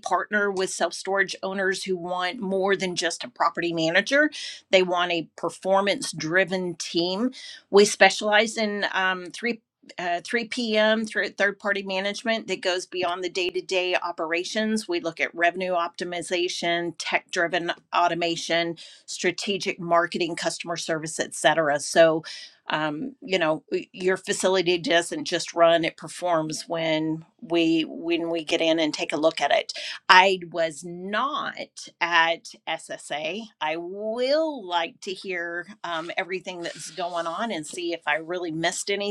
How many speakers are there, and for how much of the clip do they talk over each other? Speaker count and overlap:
1, no overlap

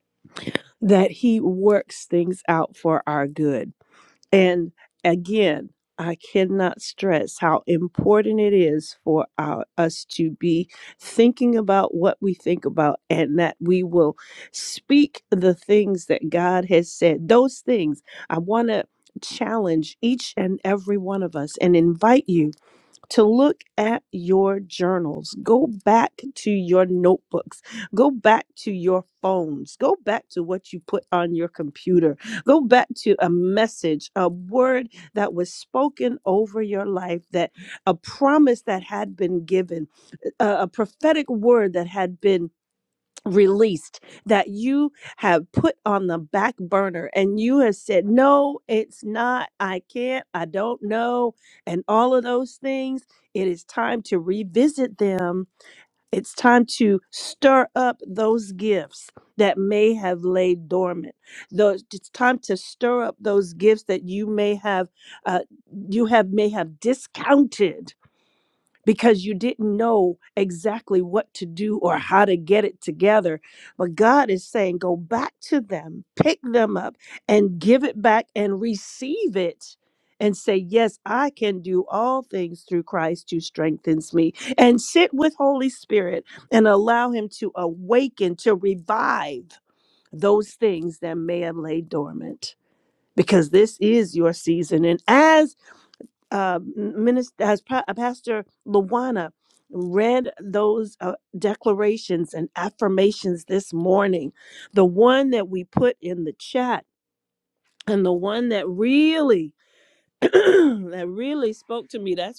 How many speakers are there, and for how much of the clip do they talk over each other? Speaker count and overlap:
1, no overlap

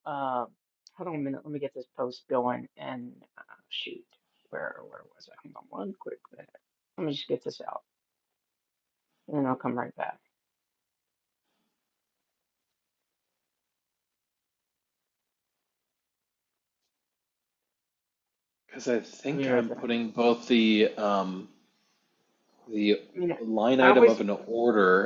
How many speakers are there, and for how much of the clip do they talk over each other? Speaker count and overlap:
2, about 4%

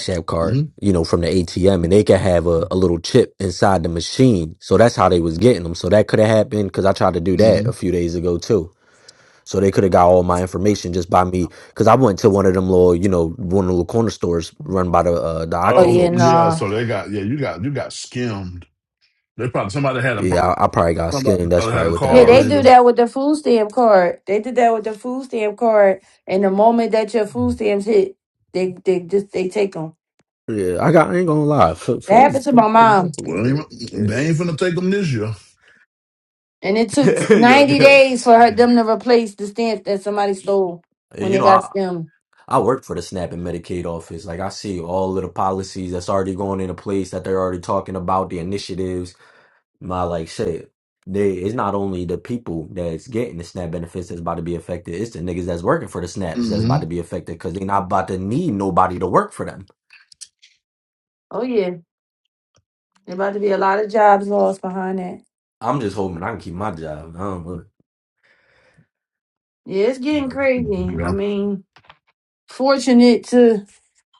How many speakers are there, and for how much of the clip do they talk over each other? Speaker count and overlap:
3, about 10%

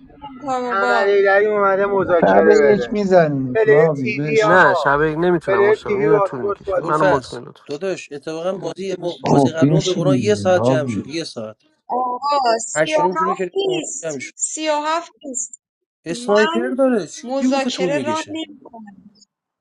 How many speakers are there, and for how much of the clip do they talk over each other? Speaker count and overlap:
5, about 46%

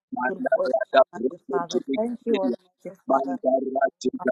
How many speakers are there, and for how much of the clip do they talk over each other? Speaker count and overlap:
2, about 49%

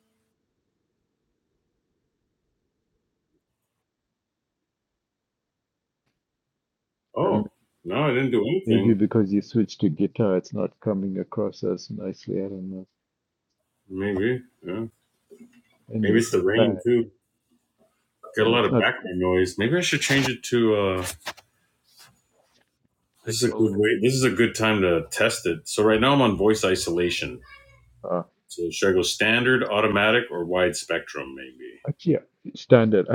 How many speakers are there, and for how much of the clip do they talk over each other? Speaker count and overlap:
2, about 7%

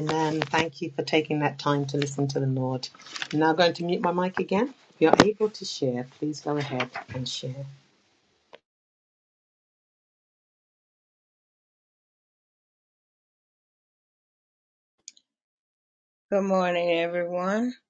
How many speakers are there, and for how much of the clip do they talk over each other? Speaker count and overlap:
2, no overlap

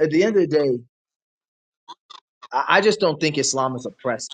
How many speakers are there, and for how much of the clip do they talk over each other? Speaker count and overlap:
1, no overlap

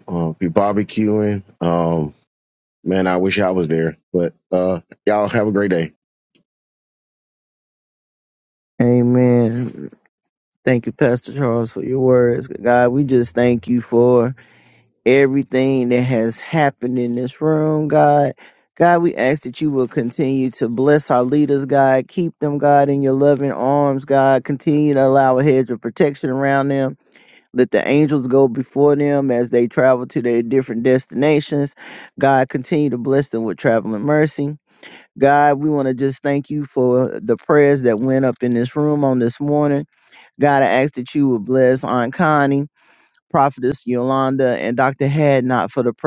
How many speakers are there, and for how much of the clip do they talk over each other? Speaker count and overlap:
2, no overlap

